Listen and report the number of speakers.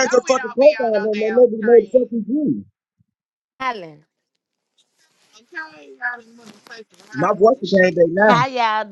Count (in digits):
3